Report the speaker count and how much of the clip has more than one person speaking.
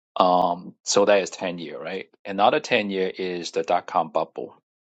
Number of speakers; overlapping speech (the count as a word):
one, no overlap